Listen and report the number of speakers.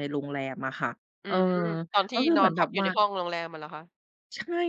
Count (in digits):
2